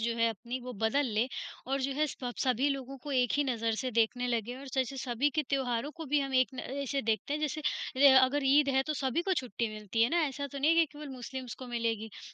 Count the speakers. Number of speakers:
1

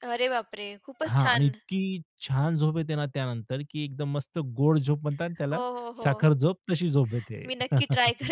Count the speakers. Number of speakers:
2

